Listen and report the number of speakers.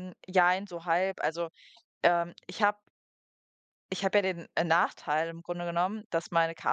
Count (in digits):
1